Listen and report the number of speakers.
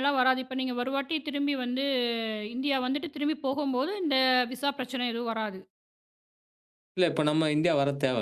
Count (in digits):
2